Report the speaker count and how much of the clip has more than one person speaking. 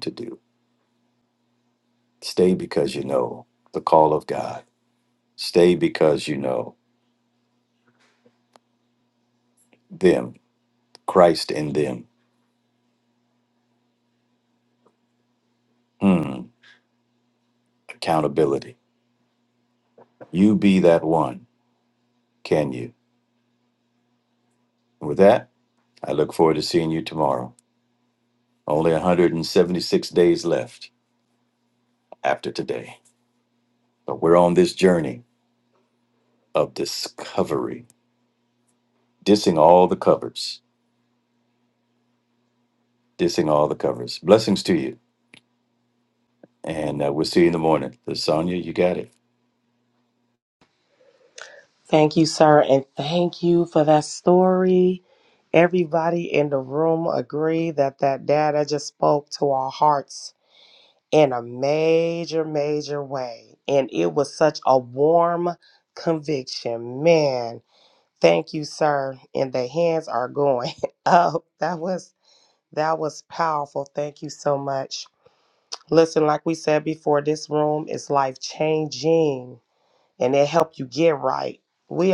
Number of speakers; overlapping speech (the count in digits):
2, no overlap